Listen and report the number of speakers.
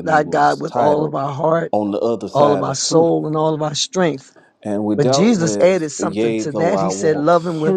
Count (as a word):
two